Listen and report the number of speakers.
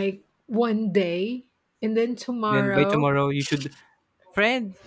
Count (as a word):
two